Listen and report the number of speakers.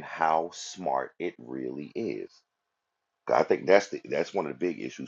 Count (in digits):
1